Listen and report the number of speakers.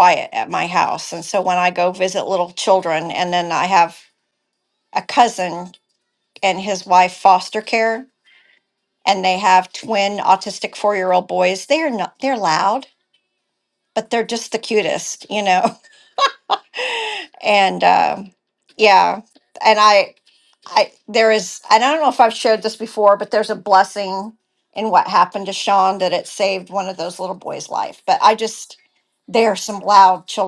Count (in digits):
1